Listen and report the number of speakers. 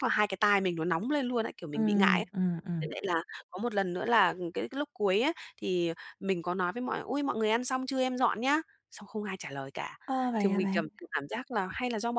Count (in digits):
2